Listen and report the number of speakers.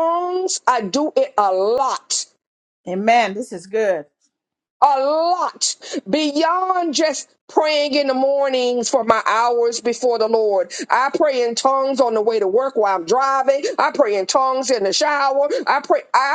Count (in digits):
2